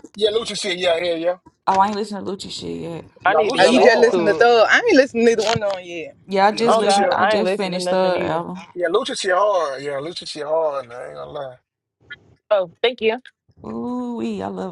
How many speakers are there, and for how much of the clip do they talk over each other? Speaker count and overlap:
four, about 21%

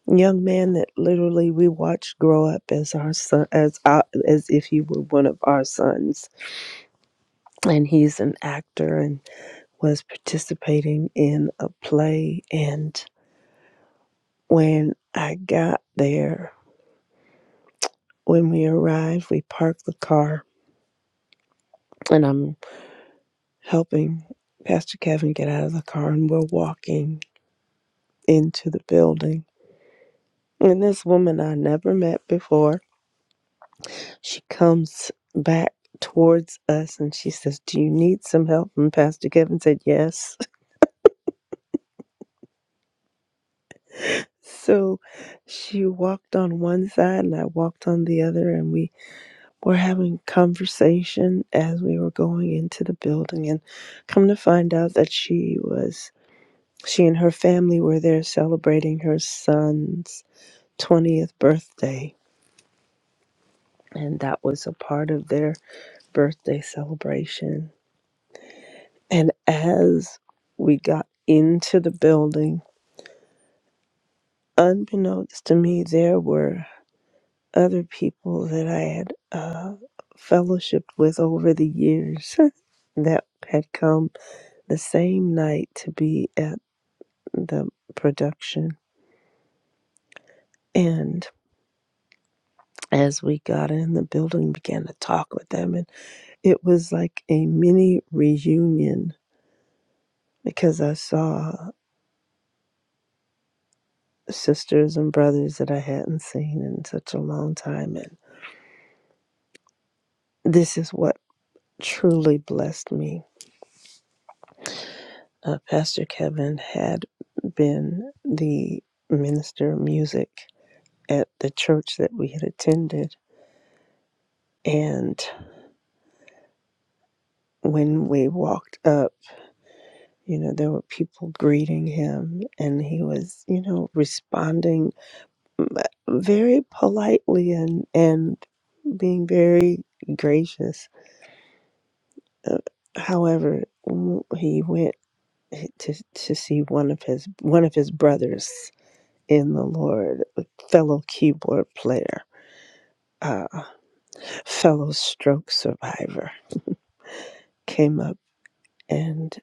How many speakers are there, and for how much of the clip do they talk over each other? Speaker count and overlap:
one, no overlap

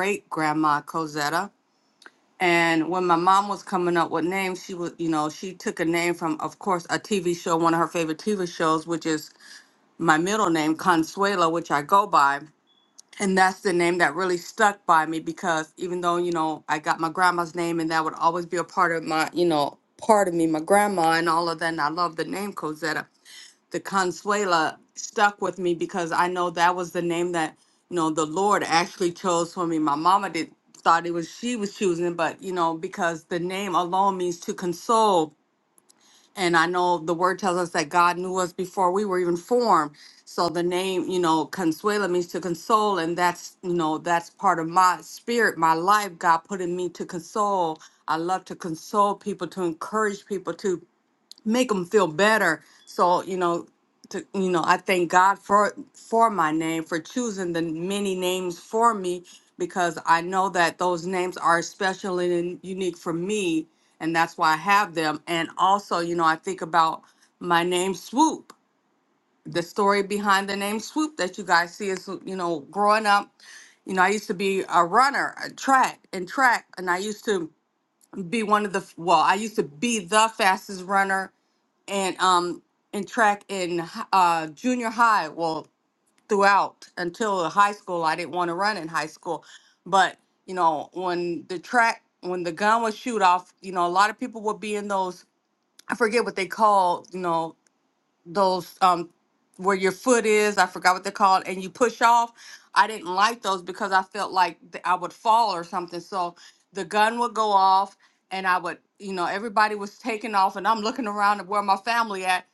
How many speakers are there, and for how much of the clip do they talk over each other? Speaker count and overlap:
one, no overlap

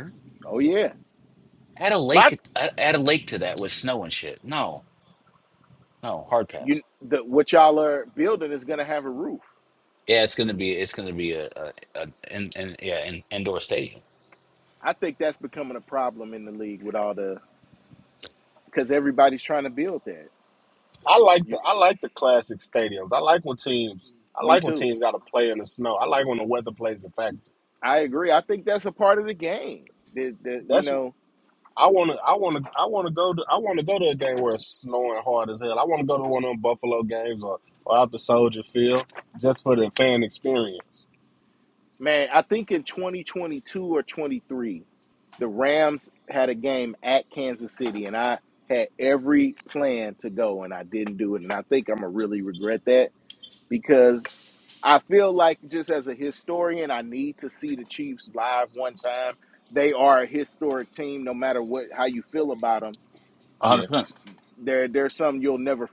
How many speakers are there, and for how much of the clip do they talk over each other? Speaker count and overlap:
three, about 2%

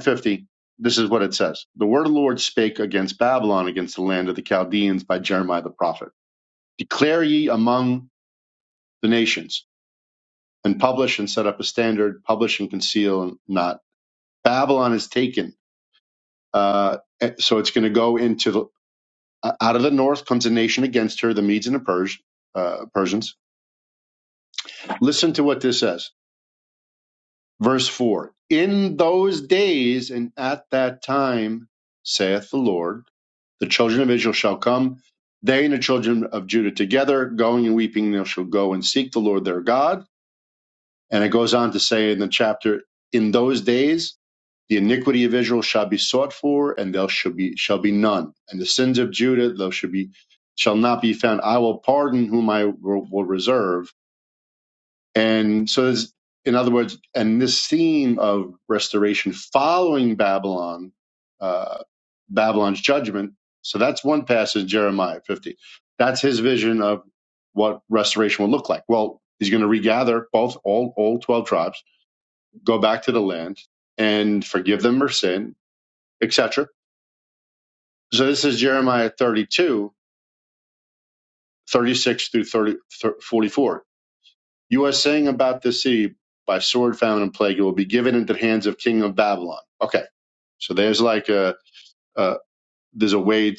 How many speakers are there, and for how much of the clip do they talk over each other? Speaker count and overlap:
one, no overlap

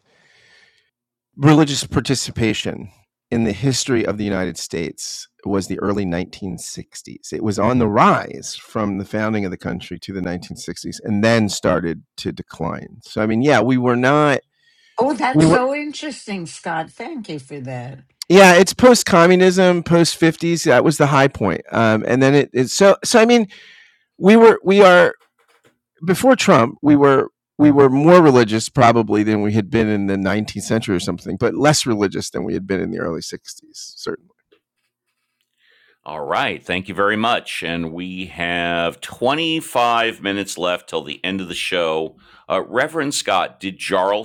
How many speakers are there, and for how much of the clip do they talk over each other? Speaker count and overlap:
three, about 1%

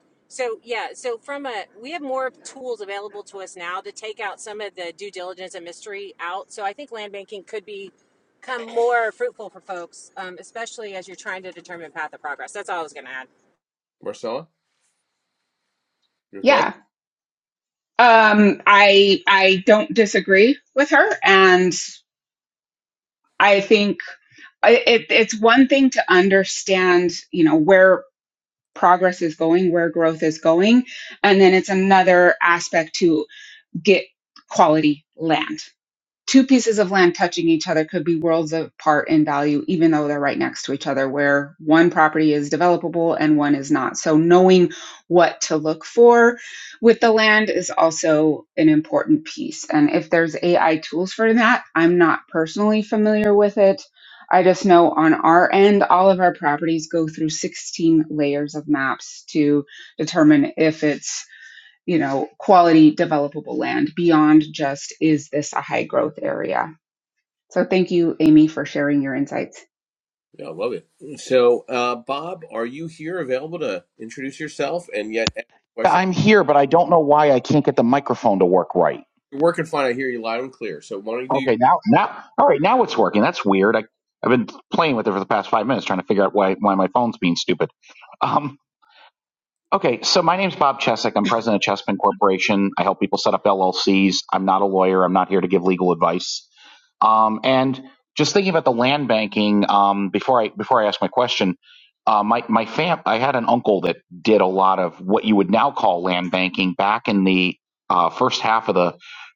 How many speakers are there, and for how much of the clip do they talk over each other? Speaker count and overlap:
four, about 1%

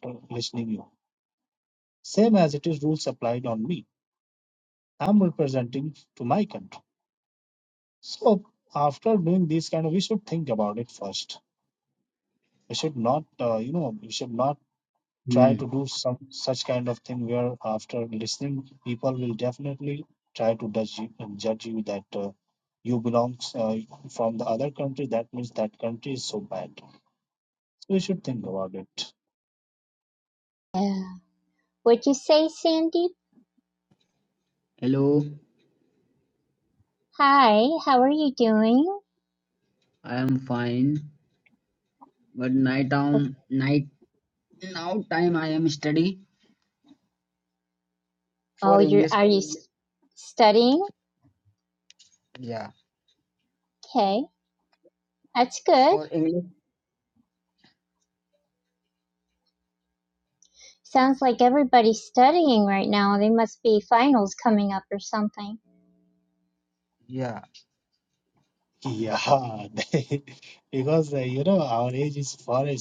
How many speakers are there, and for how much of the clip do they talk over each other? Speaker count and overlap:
three, about 1%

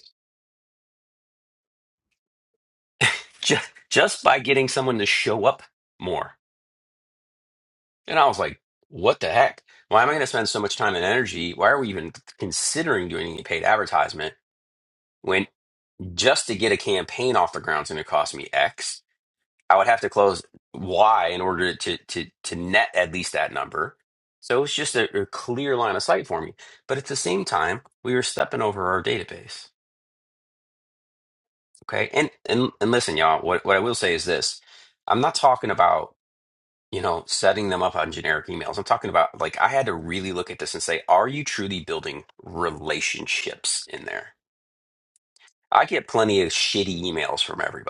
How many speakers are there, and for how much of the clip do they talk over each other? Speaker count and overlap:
one, no overlap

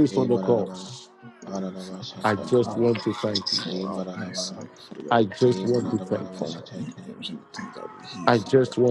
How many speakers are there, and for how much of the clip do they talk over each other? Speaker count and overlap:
three, about 64%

